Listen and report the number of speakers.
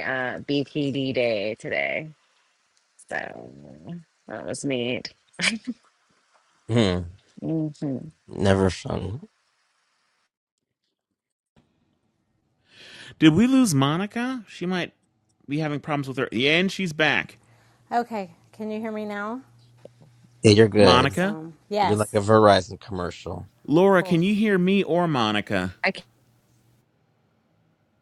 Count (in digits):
4